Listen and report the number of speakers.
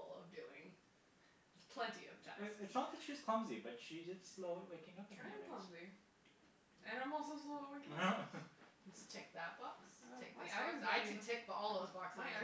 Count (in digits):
4